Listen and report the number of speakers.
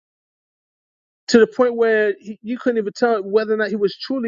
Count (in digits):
1